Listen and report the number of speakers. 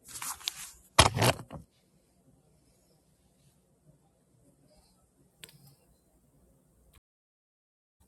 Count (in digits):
0